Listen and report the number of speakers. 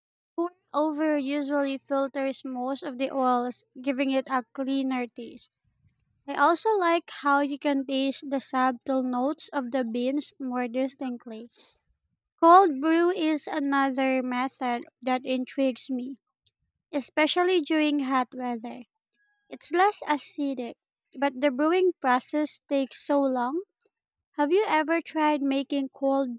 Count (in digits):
1